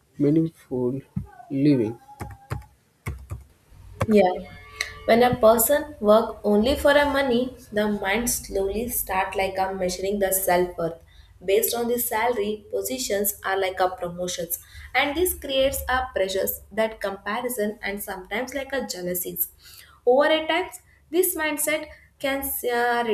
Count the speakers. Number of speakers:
two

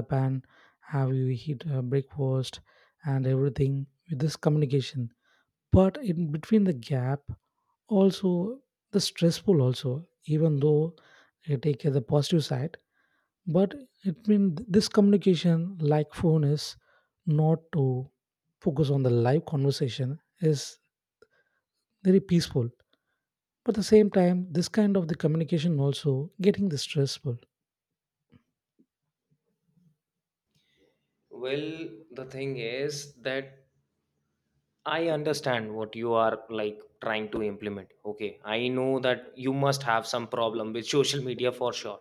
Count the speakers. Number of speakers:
two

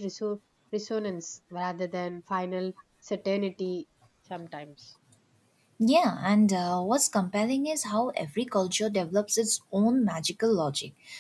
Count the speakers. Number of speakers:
two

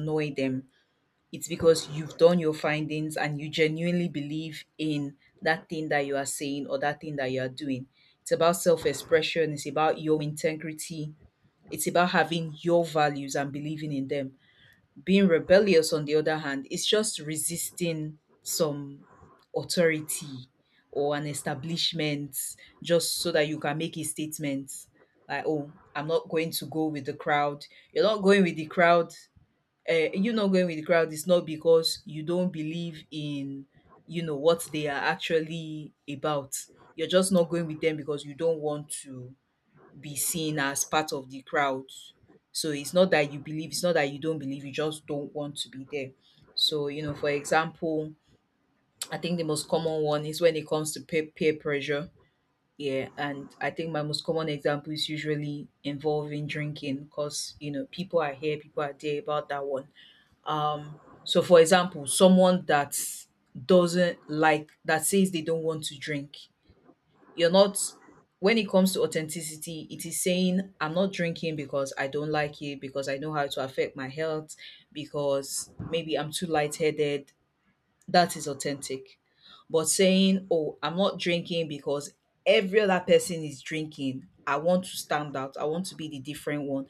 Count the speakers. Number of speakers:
one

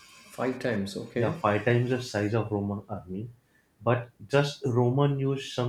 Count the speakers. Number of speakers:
two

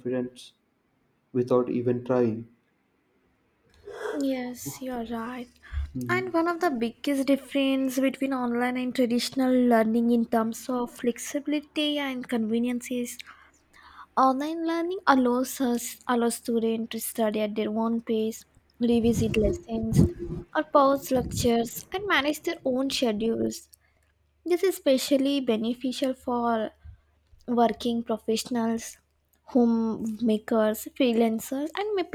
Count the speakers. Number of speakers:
two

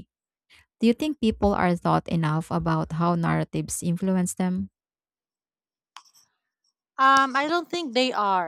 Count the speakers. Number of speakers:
two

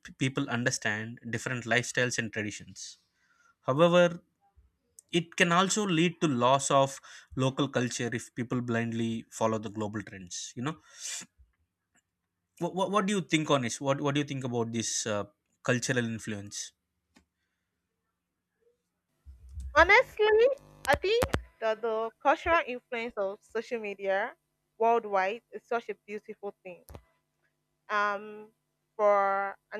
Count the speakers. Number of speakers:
two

